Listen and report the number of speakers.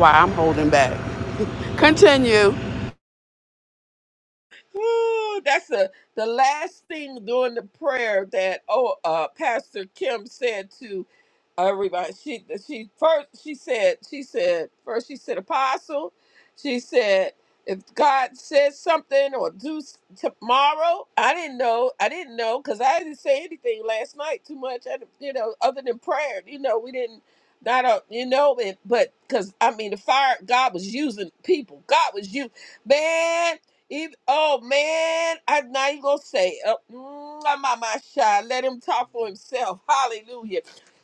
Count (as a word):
two